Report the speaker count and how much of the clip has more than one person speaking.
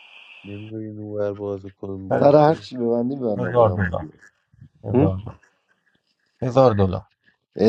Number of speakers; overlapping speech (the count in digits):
3, about 18%